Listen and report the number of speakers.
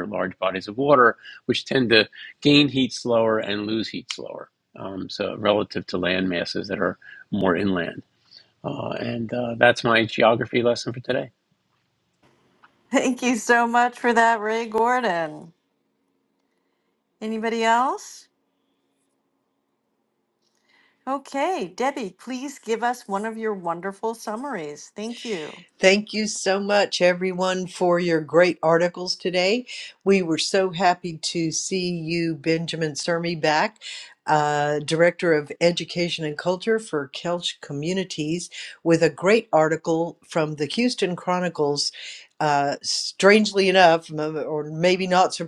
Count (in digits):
3